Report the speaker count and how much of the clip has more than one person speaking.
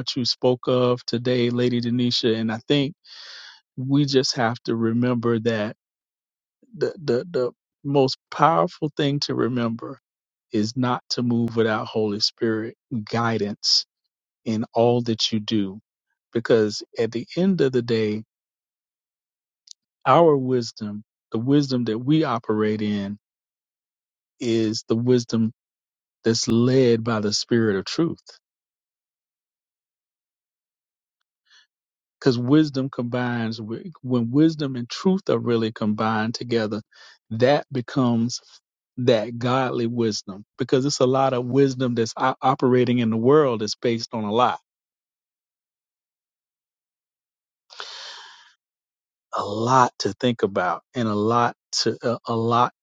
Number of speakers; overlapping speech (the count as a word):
one, no overlap